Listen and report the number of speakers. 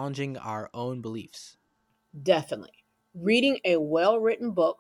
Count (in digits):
2